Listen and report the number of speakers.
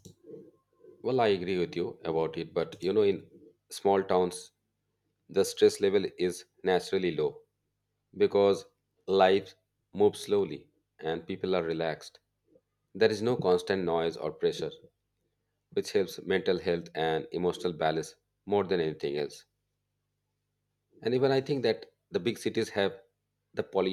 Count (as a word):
one